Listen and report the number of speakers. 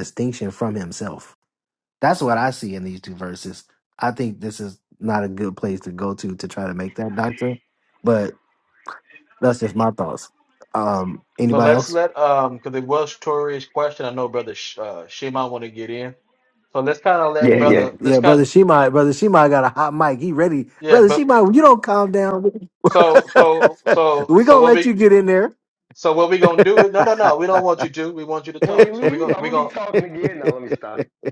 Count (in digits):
3